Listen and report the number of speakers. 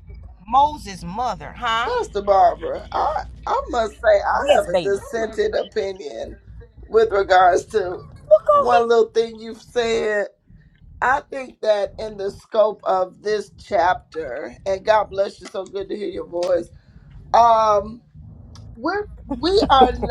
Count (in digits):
2